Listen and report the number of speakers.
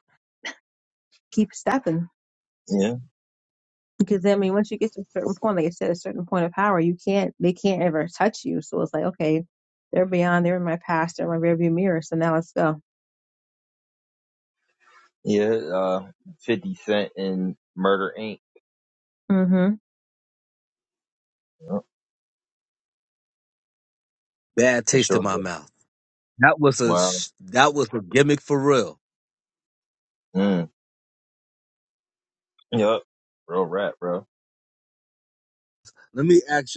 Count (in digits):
3